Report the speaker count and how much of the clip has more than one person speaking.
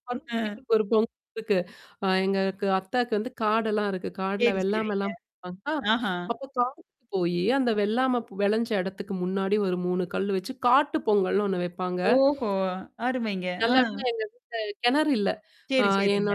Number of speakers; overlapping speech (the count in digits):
2, about 9%